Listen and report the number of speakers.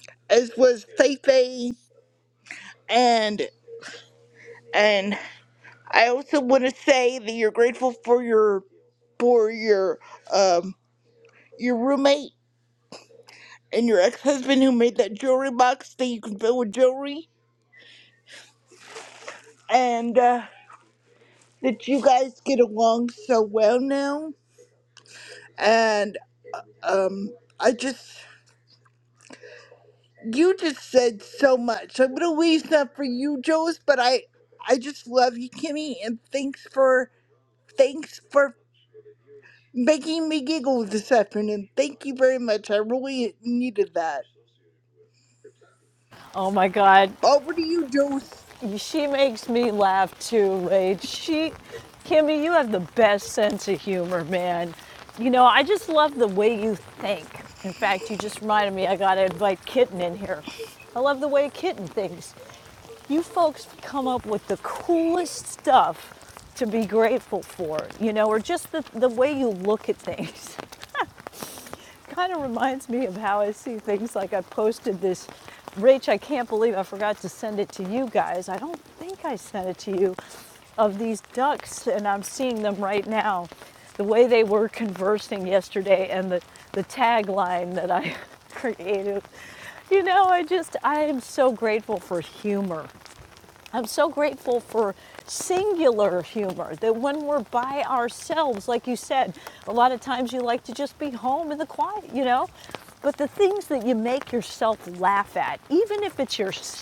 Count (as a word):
two